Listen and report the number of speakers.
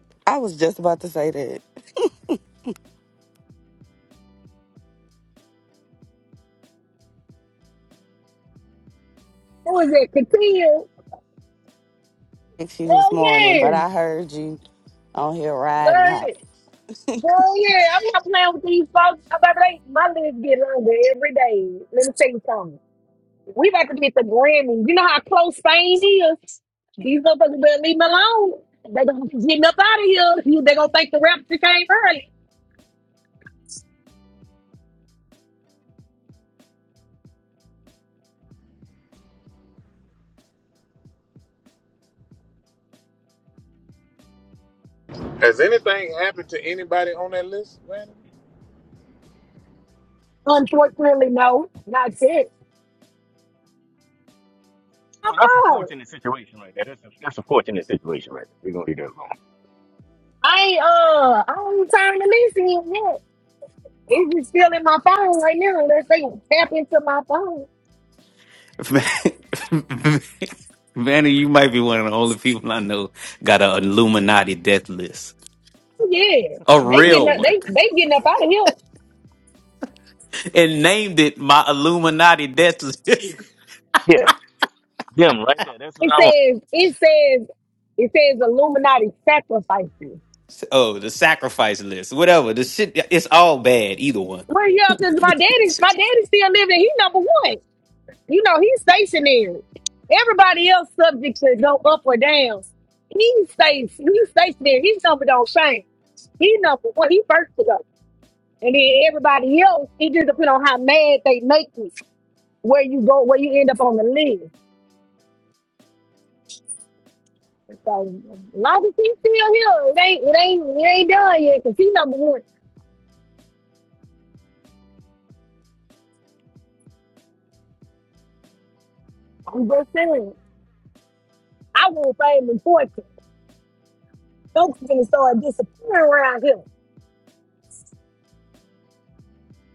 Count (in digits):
5